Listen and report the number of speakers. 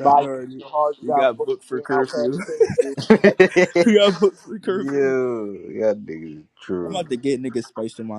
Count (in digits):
3